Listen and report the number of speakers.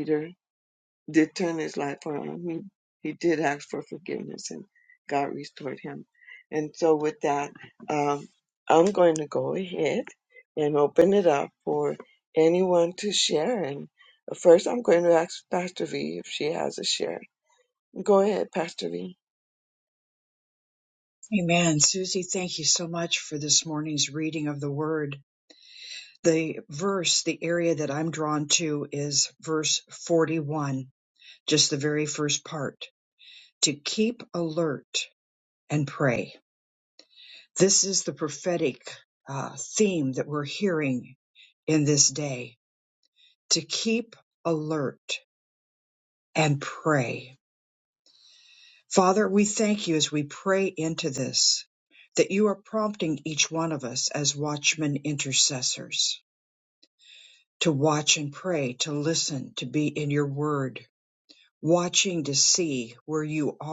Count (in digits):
2